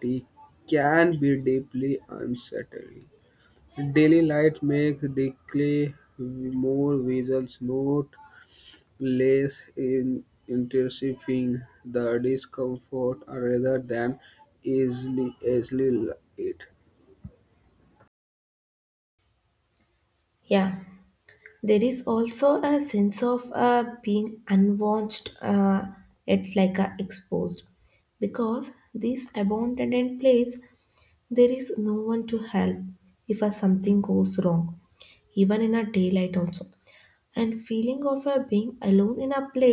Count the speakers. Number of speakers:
two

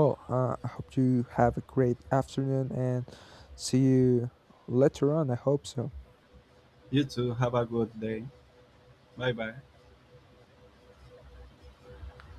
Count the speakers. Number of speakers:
two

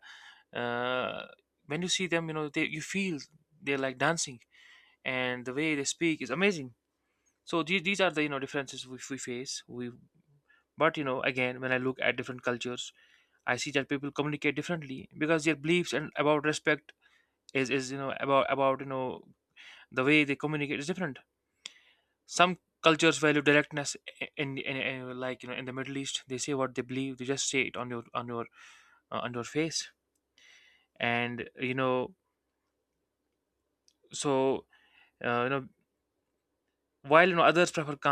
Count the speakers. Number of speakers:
one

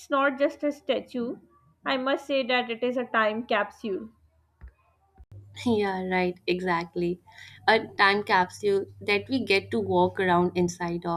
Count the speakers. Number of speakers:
two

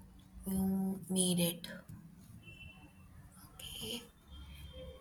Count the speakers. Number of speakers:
one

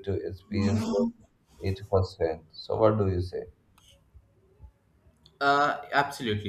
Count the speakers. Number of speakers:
two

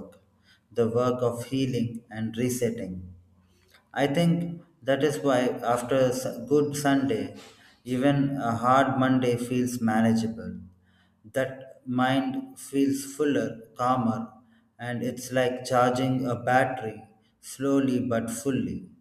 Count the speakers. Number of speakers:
one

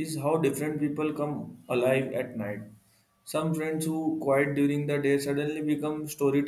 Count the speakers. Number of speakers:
one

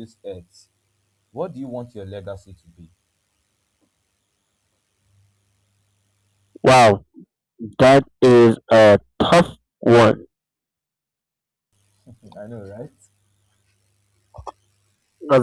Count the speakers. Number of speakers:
two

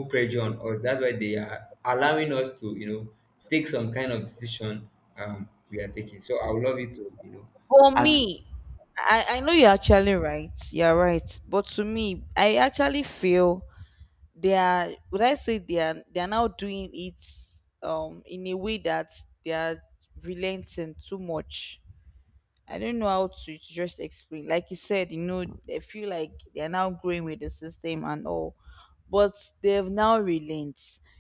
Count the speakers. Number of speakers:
two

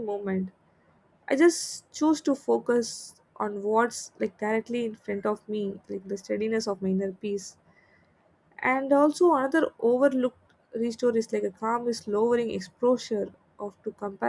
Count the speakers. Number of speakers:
one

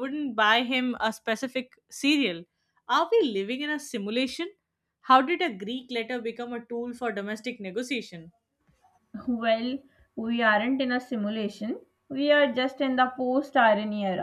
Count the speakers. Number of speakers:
two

